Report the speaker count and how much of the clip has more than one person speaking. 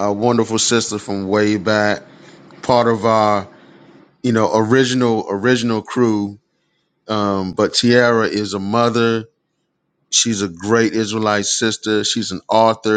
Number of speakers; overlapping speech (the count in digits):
1, no overlap